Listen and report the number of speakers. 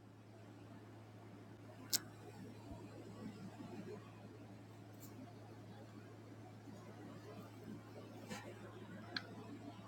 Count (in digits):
0